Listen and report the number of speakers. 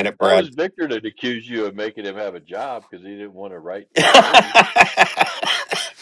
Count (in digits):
2